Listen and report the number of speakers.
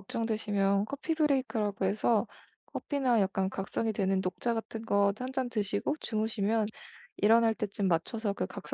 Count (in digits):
1